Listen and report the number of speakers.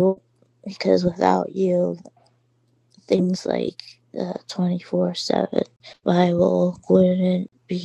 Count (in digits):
1